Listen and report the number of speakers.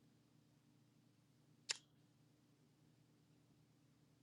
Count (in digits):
0